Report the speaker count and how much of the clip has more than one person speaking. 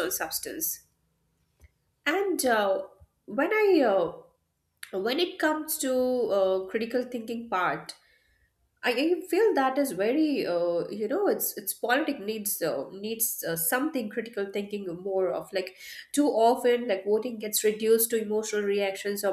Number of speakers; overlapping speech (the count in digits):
1, no overlap